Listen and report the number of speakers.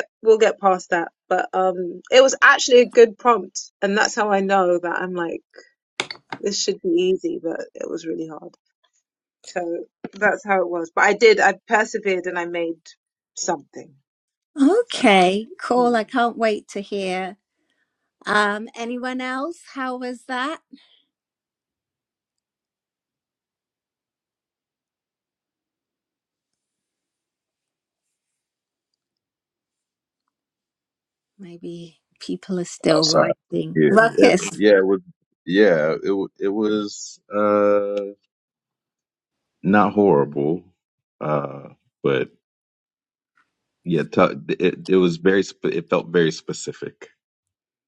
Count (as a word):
three